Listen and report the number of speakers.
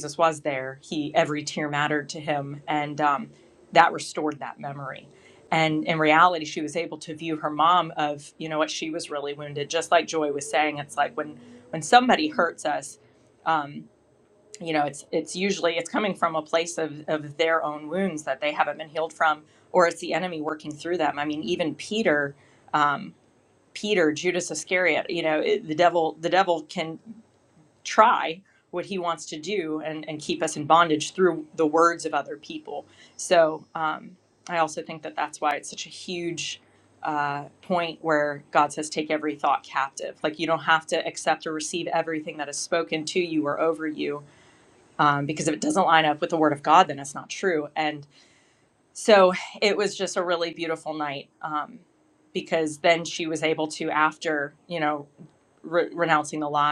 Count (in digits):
1